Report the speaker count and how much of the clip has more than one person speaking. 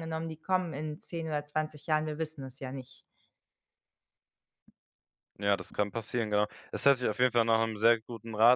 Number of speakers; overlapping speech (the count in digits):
2, no overlap